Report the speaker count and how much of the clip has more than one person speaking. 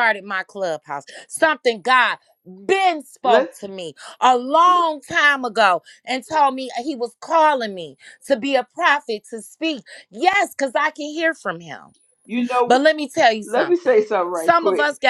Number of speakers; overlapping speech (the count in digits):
2, about 9%